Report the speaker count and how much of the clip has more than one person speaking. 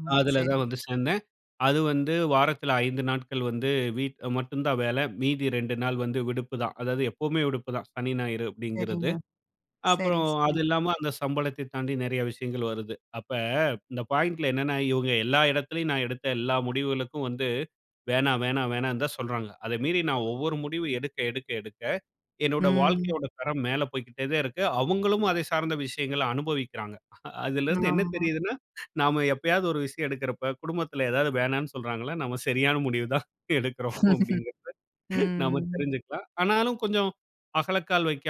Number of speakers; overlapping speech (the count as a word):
two, about 7%